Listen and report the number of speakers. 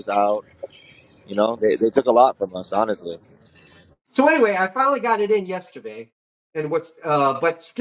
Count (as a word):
two